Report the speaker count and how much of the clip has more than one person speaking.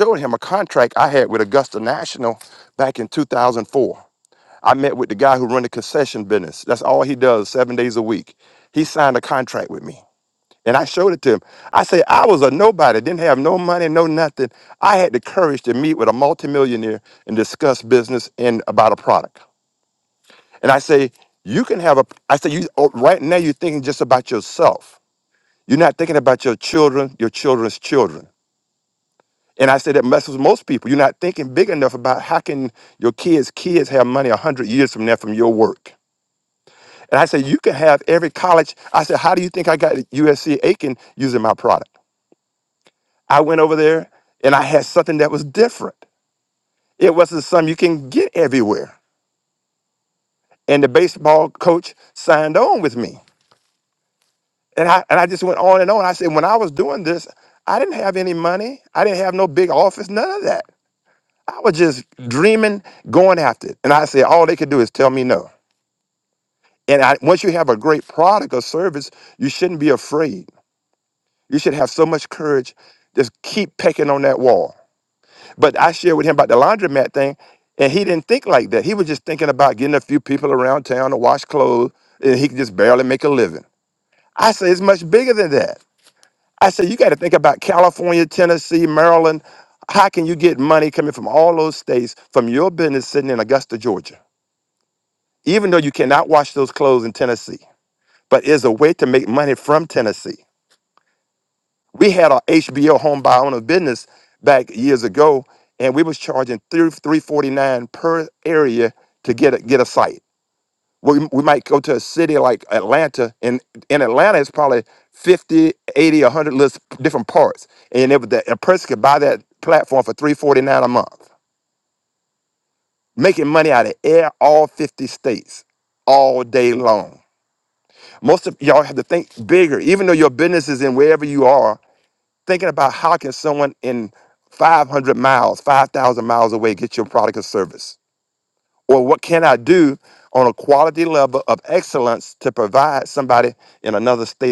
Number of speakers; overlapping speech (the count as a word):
one, no overlap